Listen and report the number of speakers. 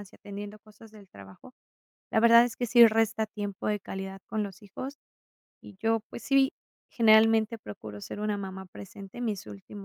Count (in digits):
1